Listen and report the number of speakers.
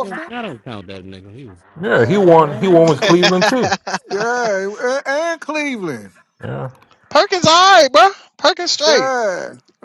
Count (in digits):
4